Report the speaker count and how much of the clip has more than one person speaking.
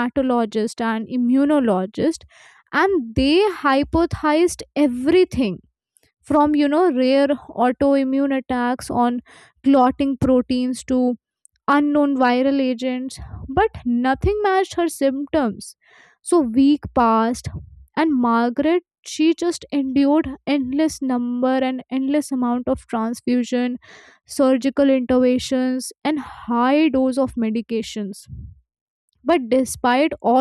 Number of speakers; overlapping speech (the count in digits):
1, no overlap